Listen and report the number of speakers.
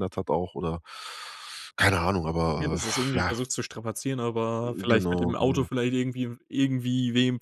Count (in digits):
2